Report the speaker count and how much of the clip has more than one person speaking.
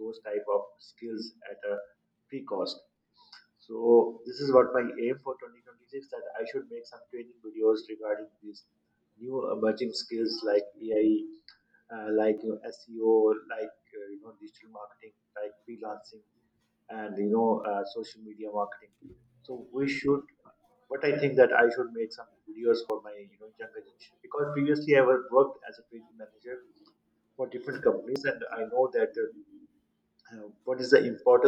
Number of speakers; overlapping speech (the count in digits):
1, no overlap